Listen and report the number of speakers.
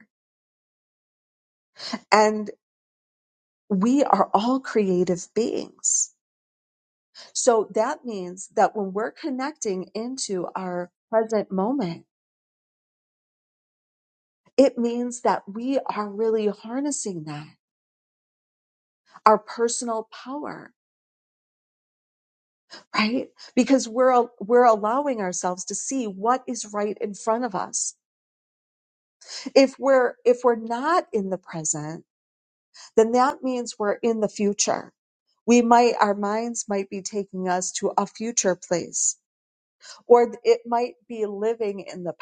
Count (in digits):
1